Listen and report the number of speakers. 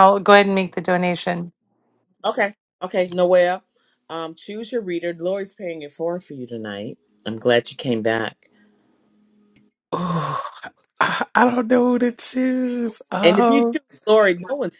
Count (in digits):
3